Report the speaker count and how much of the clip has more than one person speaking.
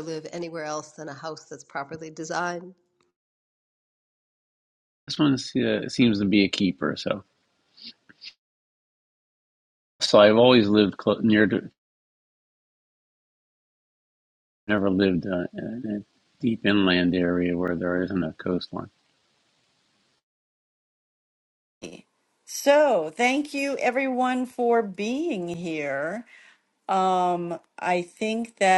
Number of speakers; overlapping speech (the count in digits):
3, no overlap